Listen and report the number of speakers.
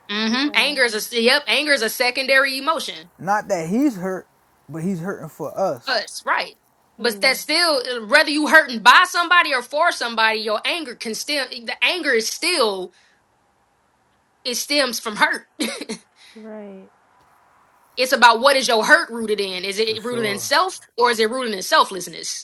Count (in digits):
3